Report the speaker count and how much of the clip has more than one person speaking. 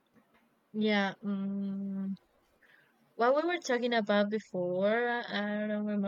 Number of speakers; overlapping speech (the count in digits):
1, no overlap